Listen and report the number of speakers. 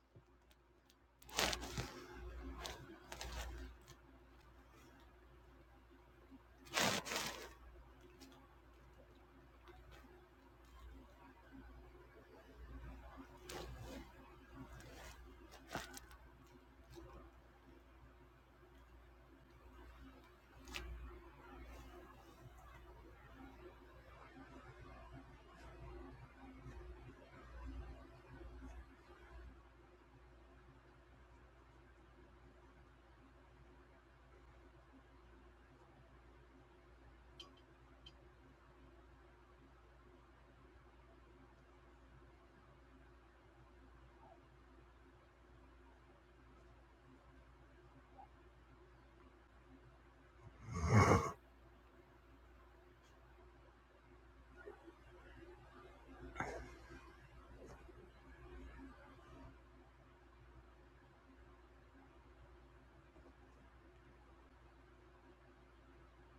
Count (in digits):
0